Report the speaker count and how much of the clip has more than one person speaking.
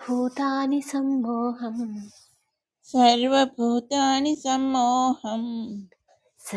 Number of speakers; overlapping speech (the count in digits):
2, no overlap